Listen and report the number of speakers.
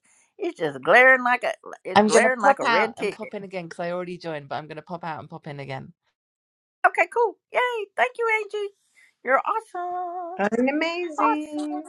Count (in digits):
3